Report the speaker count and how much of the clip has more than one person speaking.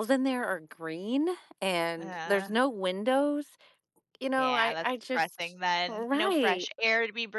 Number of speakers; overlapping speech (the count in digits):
2, about 26%